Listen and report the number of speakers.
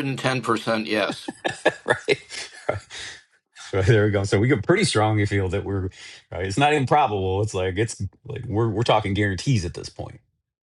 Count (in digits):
2